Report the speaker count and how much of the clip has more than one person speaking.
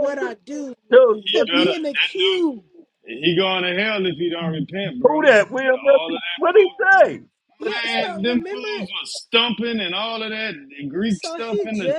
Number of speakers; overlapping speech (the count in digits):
3, about 35%